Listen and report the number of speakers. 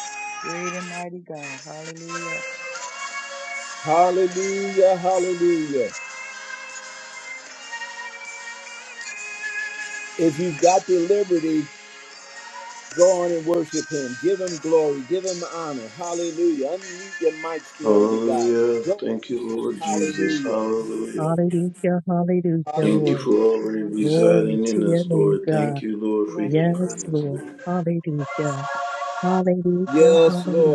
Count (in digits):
4